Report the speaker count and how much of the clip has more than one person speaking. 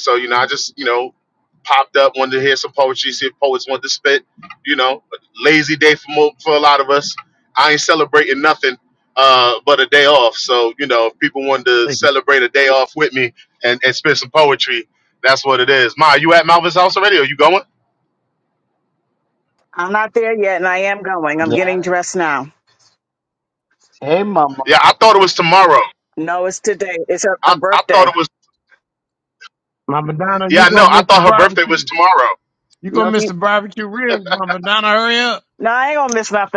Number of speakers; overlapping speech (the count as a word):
four, about 9%